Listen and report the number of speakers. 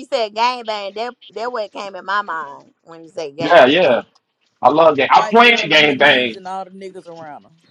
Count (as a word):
three